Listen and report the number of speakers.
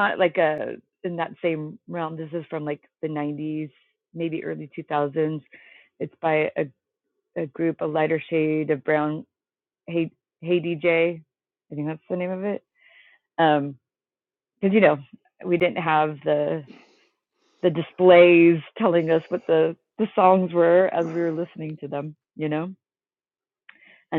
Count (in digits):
1